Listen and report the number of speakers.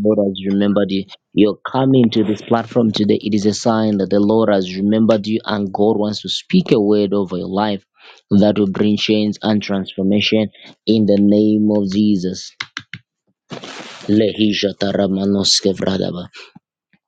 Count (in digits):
1